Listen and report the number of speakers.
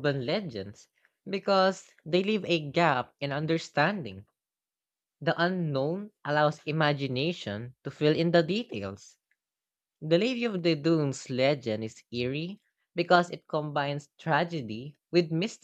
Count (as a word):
one